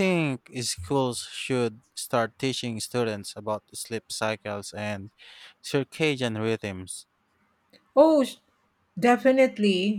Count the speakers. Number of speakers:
two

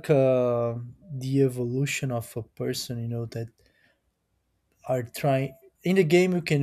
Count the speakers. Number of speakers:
one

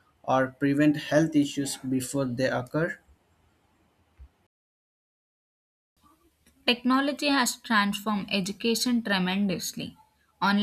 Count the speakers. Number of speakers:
two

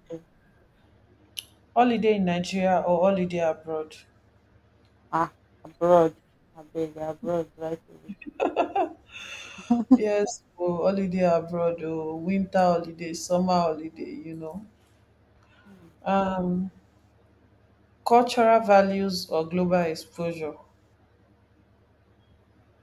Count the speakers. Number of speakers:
two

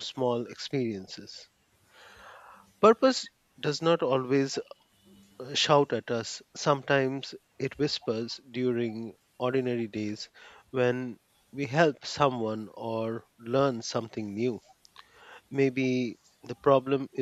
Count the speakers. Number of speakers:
one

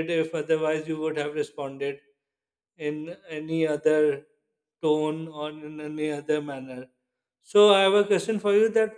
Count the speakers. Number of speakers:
one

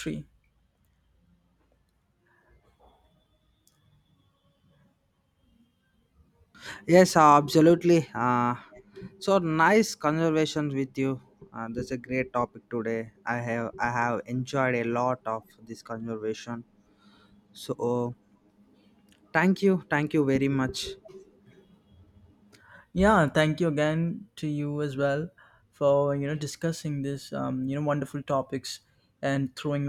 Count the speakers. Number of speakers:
two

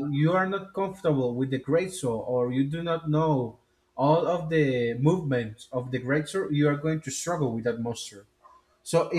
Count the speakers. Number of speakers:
one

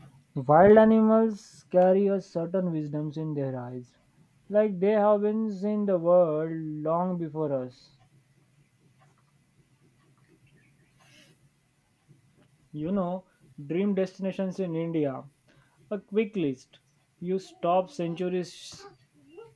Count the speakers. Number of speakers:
one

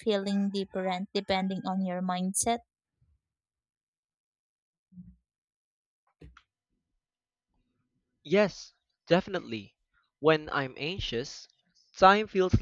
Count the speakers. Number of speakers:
two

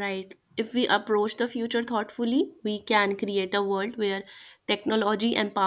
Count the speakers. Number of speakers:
one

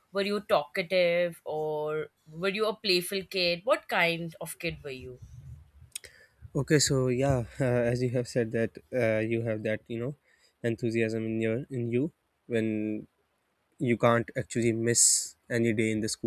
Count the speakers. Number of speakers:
two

